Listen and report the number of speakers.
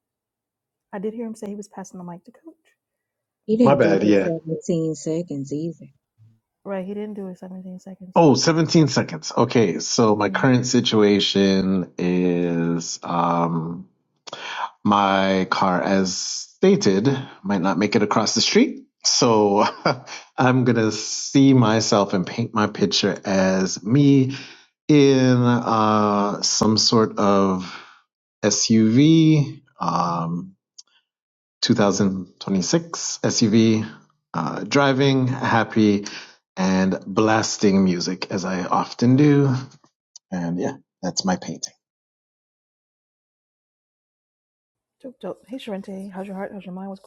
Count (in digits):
3